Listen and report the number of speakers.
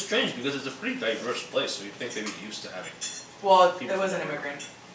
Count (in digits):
2